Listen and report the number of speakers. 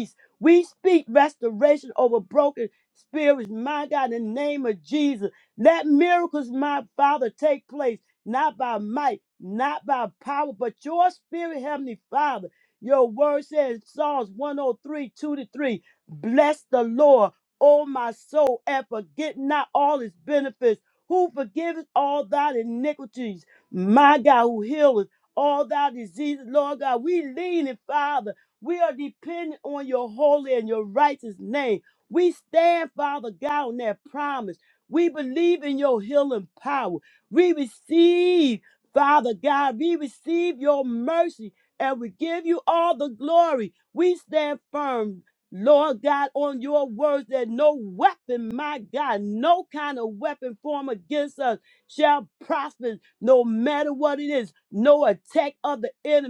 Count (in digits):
1